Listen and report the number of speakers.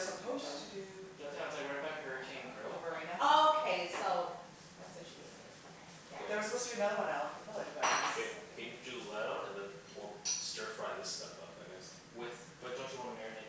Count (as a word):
four